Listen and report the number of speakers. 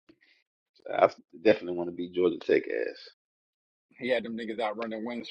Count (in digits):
2